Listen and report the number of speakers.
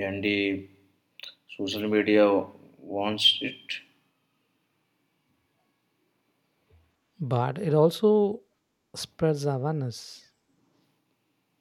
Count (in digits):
2